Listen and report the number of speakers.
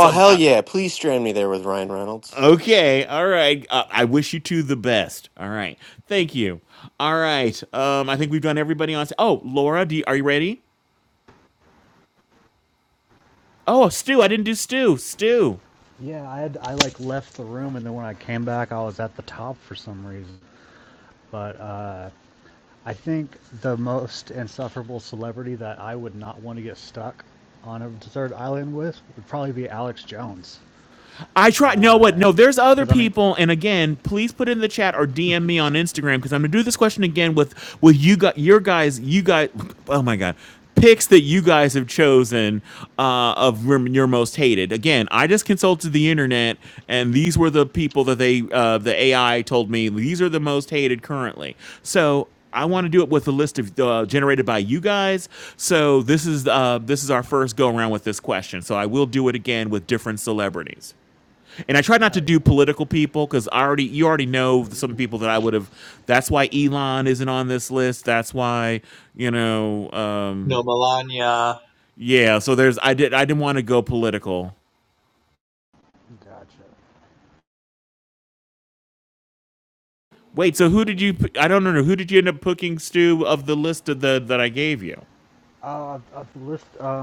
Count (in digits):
4